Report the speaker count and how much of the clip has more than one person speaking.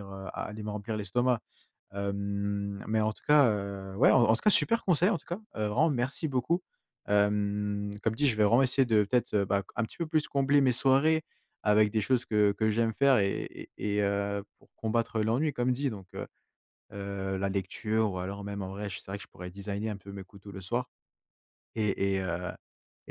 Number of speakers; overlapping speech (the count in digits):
1, no overlap